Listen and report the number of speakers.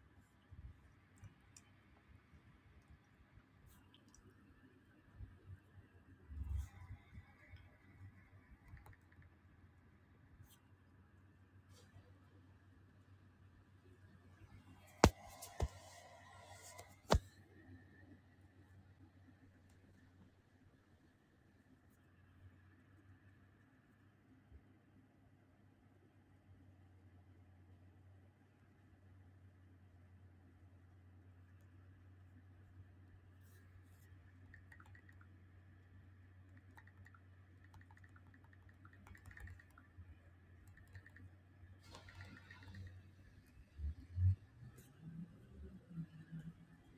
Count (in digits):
0